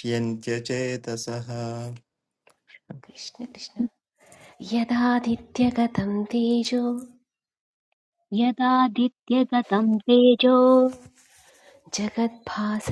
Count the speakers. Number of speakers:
three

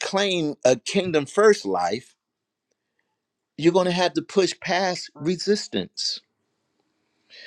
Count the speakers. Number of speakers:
one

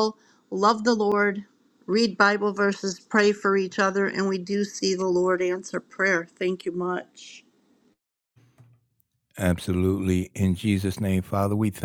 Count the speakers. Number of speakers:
two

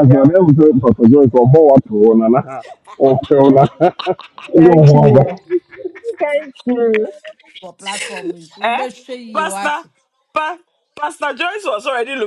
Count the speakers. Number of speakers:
four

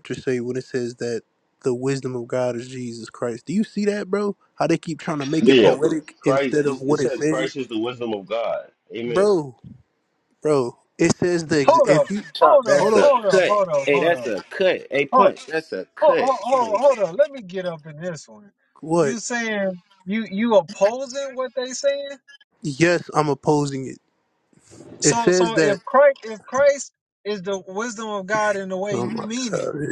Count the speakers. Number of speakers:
four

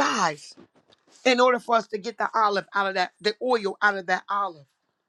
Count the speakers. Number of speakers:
one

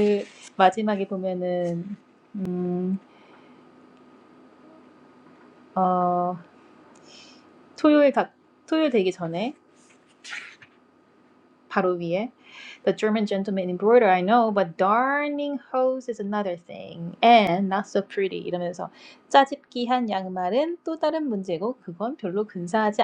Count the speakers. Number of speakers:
one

